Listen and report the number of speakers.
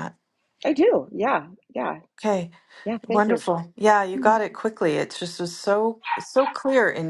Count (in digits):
2